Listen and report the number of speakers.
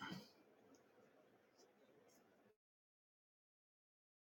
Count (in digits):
0